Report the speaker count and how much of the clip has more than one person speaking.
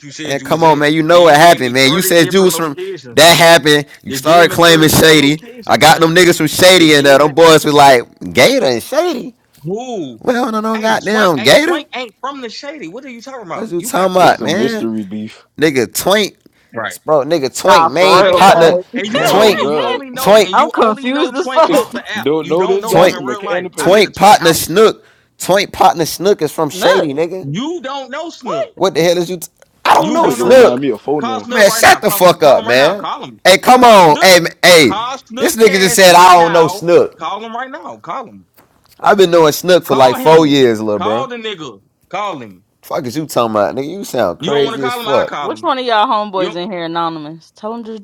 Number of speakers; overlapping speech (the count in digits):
4, about 45%